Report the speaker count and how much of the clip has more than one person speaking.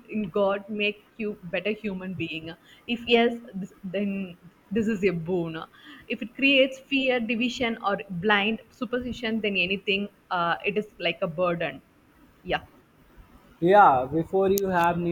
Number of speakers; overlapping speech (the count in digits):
2, no overlap